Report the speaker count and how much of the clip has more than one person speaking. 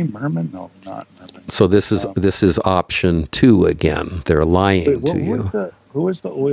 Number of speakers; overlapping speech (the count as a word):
two, about 13%